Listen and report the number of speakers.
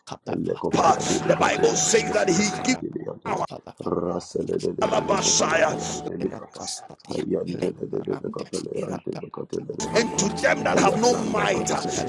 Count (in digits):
3